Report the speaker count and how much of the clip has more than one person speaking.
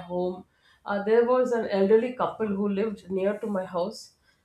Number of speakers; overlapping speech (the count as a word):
one, no overlap